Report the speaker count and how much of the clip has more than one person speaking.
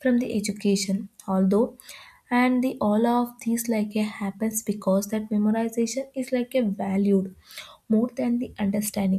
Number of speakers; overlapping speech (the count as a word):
one, no overlap